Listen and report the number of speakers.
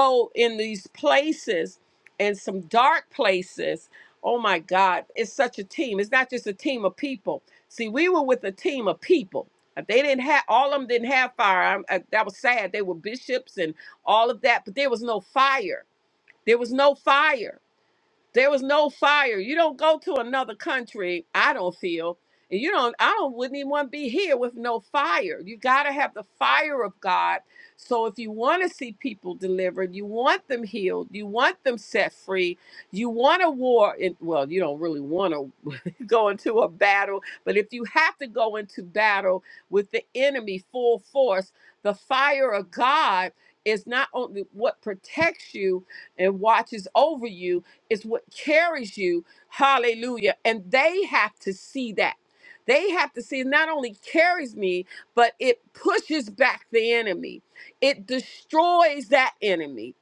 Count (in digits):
1